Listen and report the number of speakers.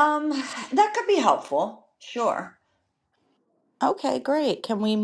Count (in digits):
2